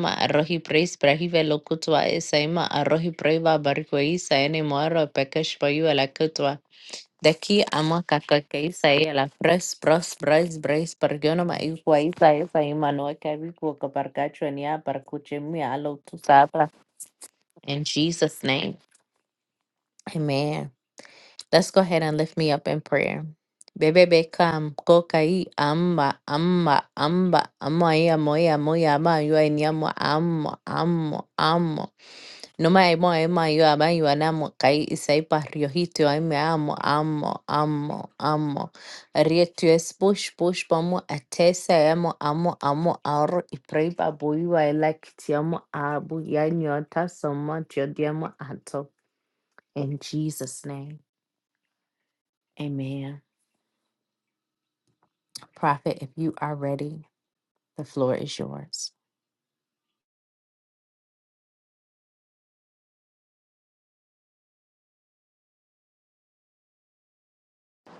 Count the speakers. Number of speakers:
one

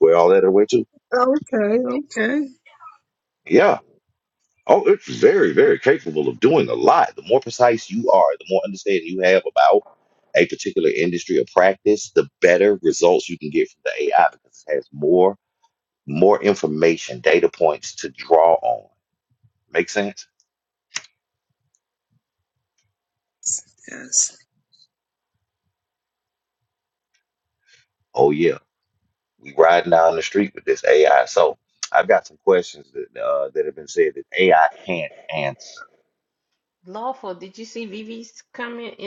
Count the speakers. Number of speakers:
three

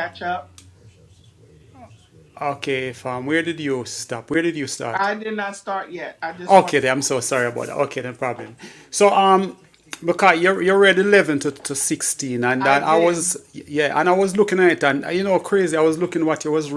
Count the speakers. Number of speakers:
two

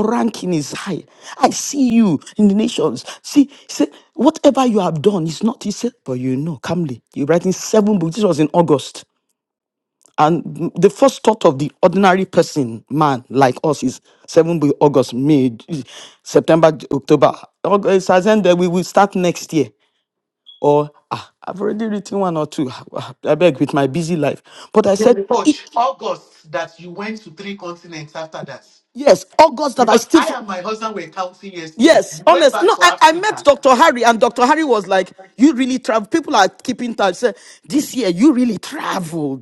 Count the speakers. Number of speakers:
two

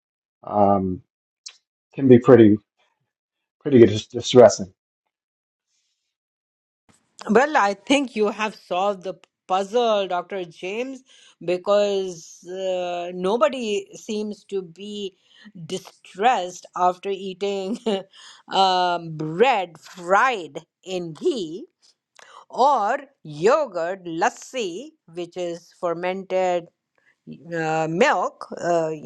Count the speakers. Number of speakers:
two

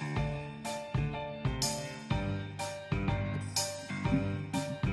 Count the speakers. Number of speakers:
zero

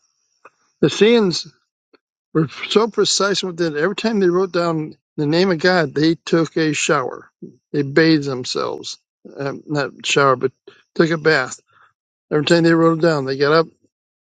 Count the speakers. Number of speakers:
one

